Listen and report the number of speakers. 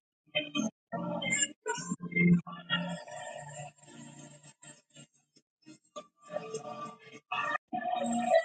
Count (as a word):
zero